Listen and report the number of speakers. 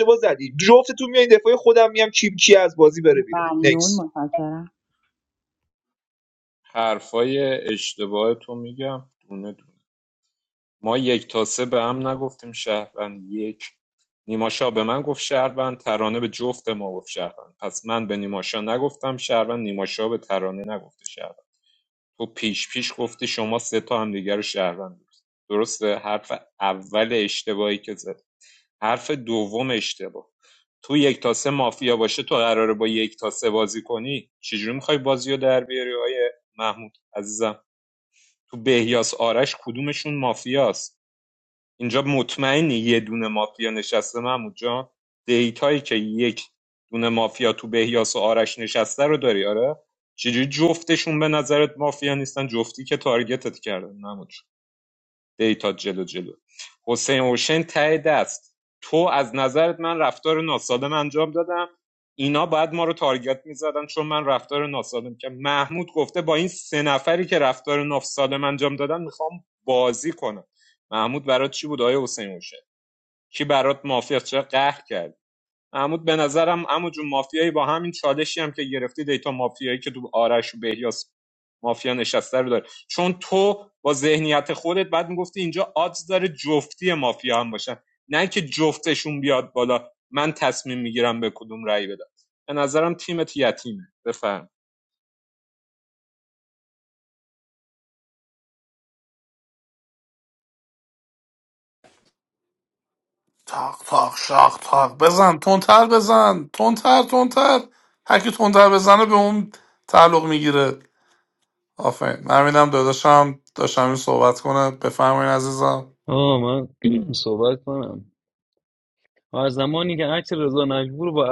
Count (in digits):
5